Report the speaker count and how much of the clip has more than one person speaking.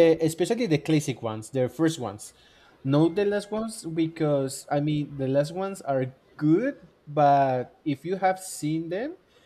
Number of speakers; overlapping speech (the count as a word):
one, no overlap